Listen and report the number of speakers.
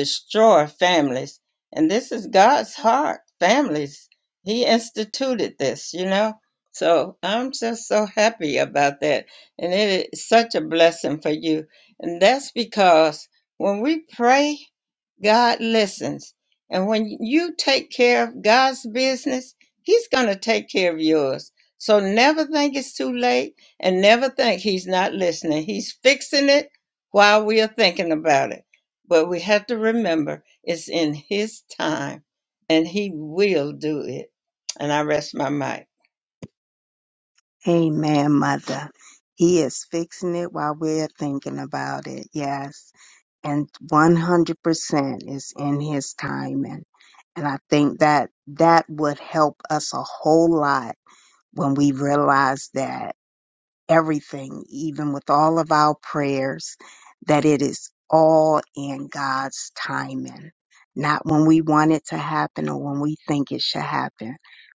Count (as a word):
two